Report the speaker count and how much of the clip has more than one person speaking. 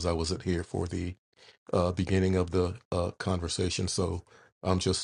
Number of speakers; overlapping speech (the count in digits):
1, no overlap